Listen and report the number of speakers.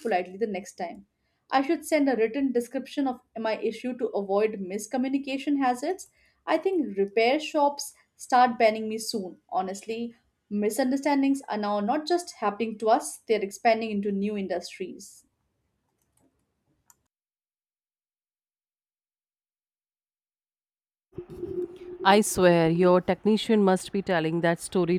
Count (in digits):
2